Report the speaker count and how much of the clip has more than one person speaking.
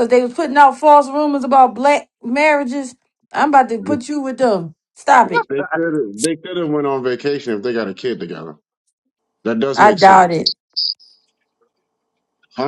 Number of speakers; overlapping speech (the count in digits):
2, about 4%